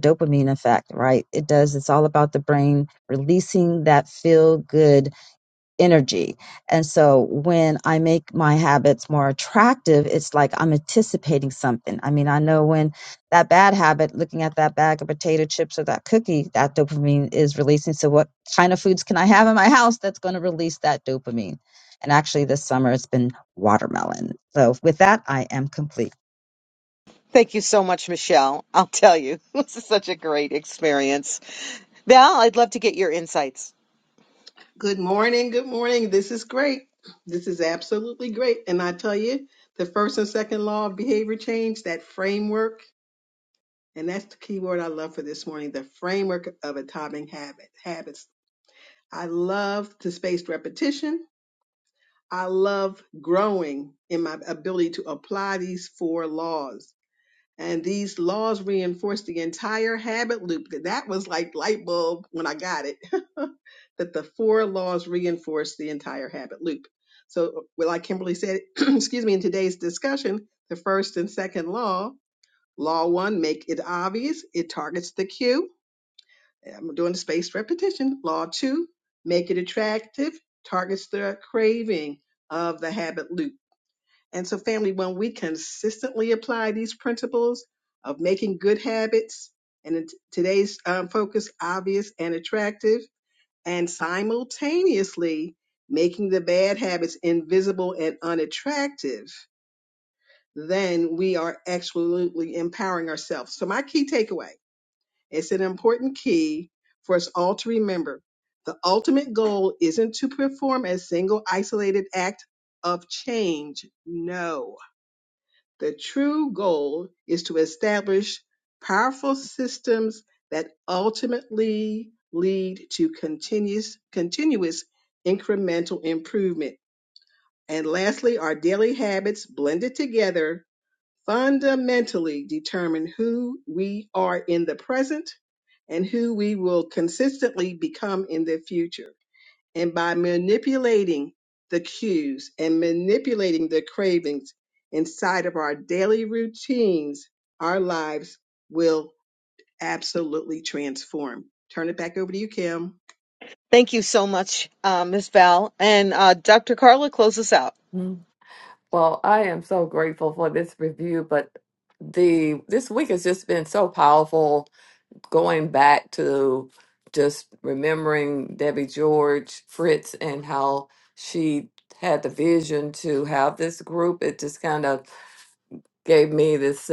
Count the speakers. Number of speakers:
4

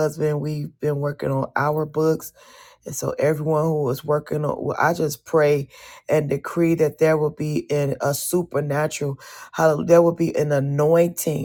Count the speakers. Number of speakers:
1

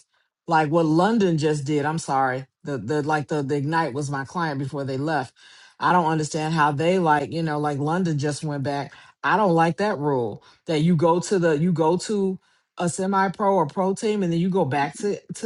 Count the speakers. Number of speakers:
1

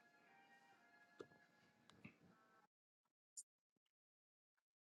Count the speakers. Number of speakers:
0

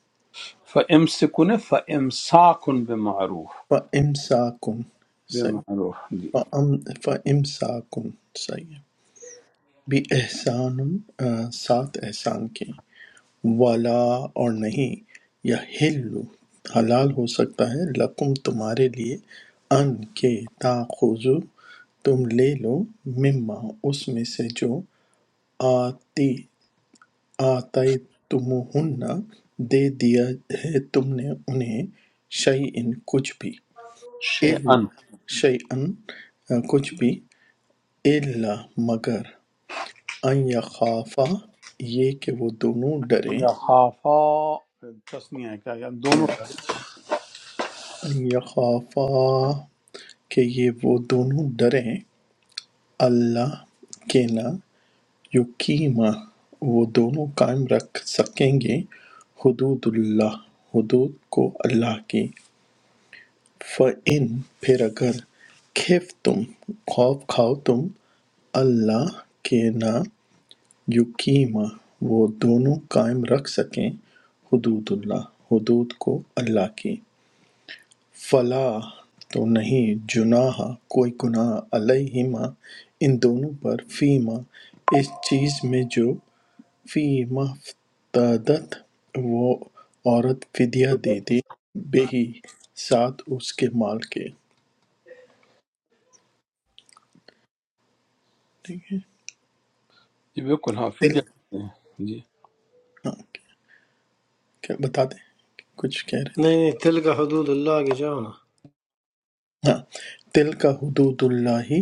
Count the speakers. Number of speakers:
3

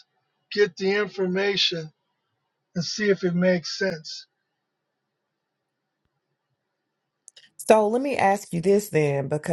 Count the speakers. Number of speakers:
2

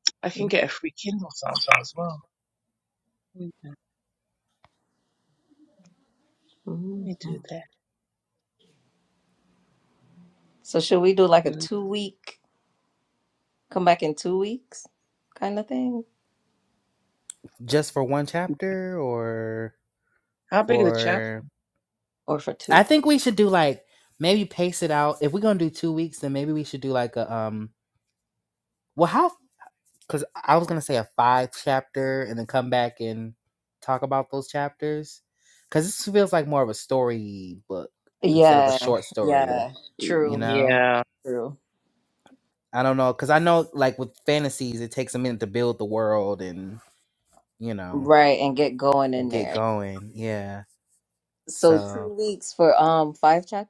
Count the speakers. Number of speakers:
3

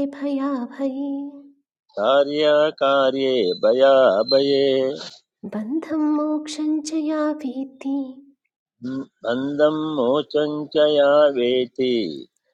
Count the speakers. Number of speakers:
2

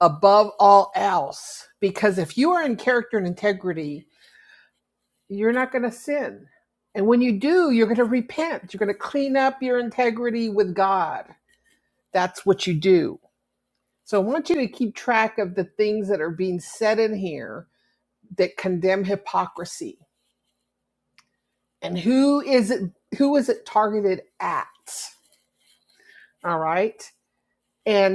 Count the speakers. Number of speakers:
1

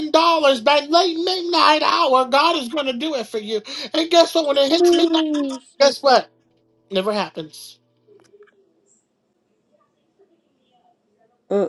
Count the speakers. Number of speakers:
2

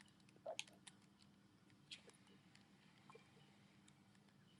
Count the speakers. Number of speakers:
0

